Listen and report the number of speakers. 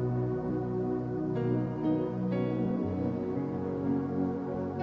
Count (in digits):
0